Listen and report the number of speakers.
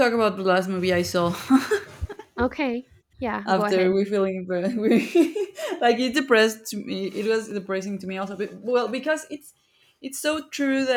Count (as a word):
two